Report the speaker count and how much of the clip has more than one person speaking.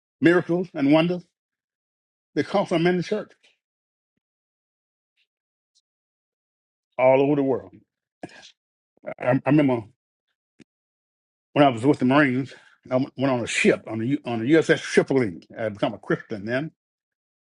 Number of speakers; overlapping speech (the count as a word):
one, no overlap